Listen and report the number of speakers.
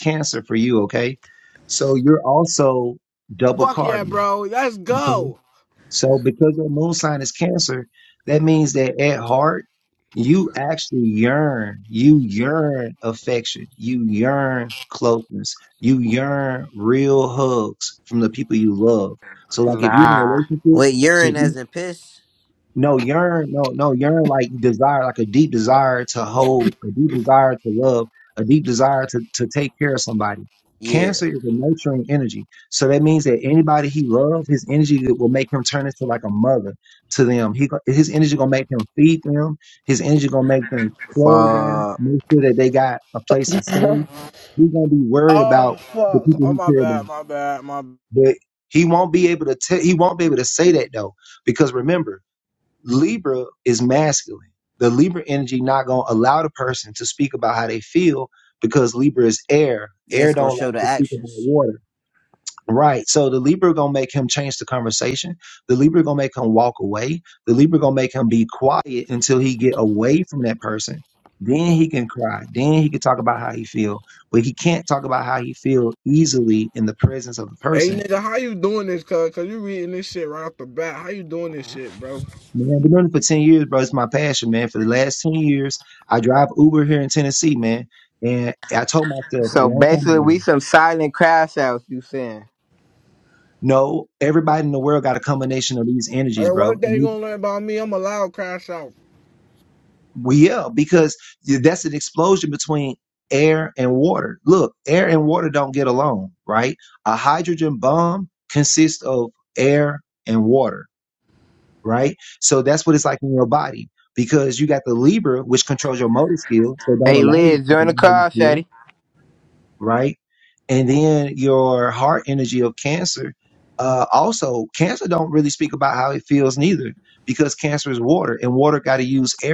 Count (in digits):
4